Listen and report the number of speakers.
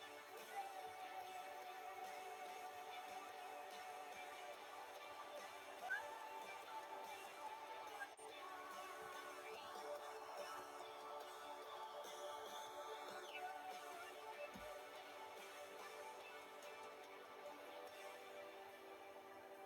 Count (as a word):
zero